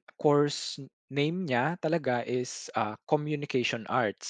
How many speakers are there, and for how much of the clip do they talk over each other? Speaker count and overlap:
1, no overlap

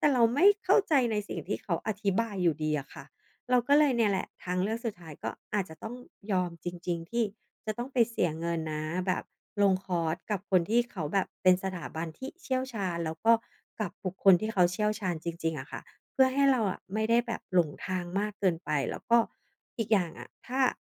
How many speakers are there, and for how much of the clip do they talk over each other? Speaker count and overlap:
1, no overlap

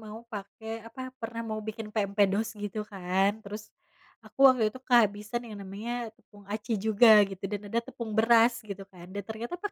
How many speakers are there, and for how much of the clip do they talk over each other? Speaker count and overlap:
1, no overlap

